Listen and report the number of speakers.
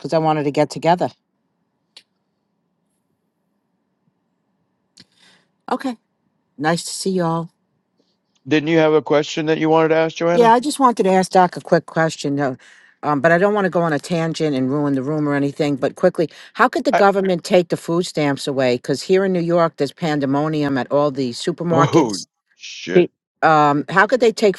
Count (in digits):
2